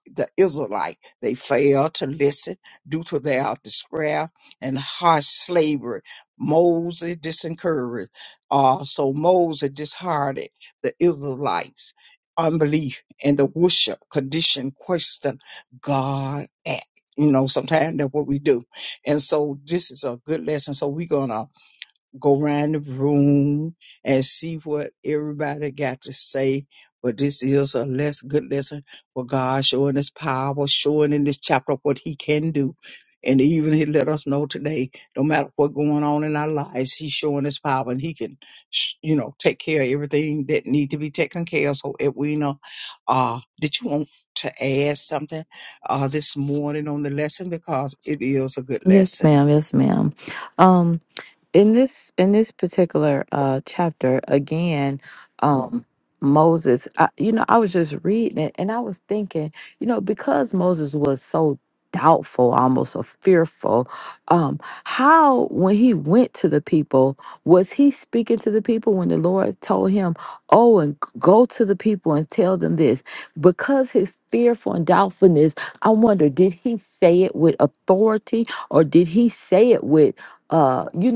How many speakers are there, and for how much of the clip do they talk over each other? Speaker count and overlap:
two, about 1%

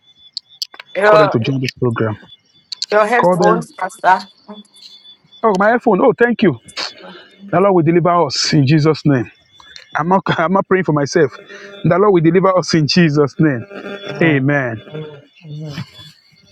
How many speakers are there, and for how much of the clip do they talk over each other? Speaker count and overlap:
three, about 7%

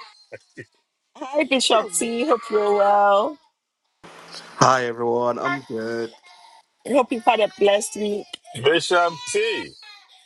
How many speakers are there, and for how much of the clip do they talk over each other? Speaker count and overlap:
three, about 2%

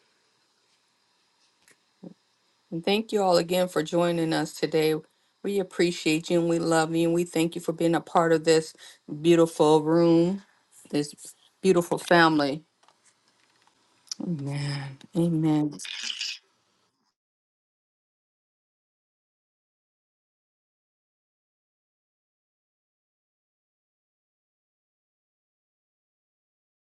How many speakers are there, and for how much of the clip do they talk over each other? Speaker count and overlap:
one, no overlap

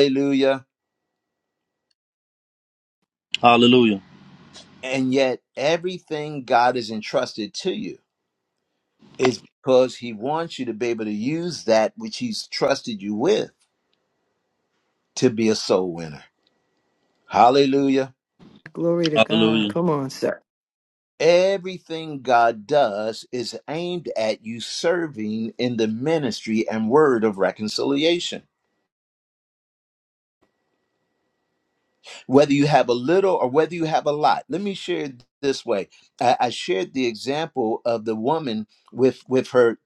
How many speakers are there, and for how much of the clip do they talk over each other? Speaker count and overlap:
three, about 1%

